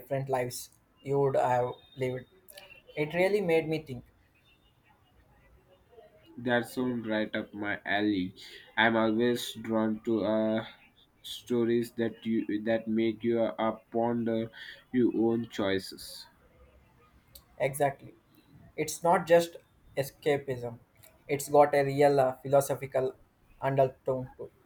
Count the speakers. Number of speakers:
two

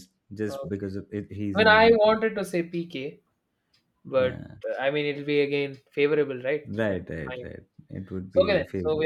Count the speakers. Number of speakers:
two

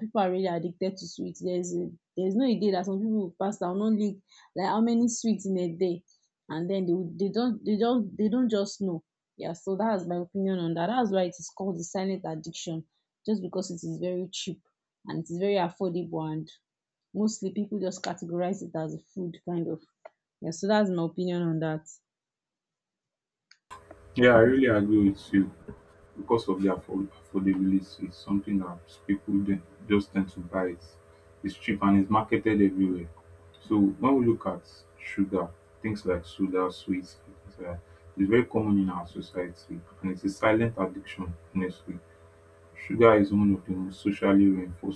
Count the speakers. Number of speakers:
two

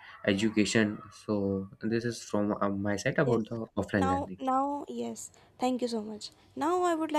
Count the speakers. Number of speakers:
two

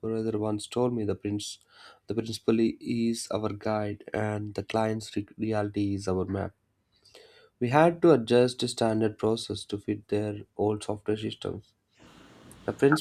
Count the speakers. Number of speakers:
one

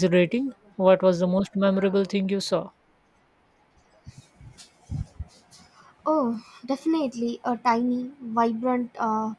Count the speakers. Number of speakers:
two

